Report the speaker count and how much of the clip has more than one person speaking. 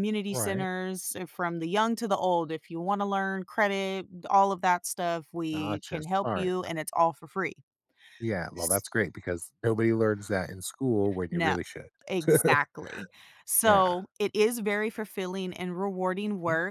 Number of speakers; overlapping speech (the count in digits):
2, about 12%